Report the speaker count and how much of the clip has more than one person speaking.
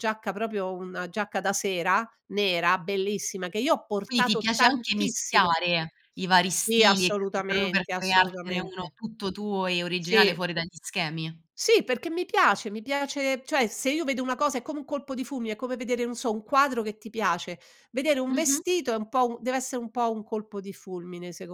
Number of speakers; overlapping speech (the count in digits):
2, about 18%